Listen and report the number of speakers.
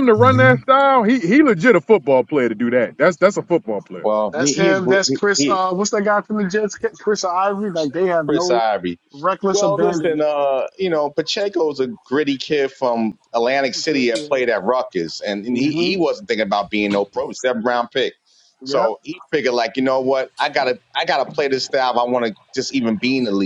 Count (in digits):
3